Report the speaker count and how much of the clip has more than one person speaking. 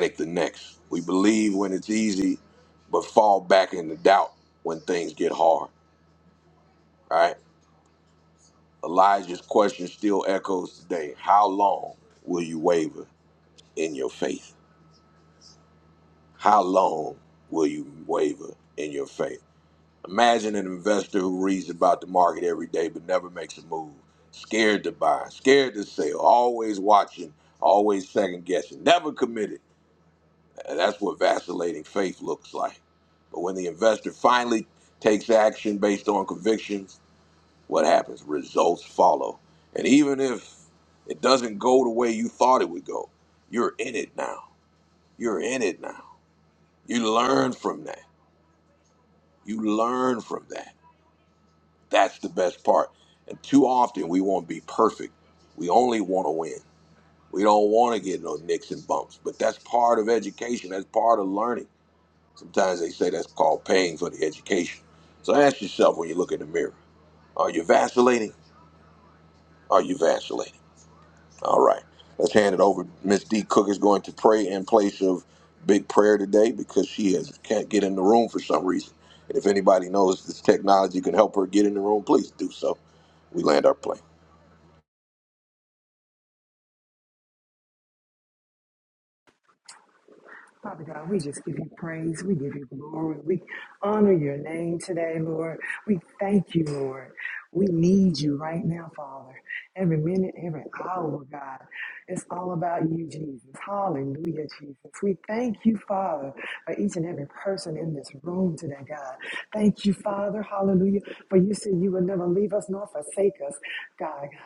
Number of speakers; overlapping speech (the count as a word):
two, no overlap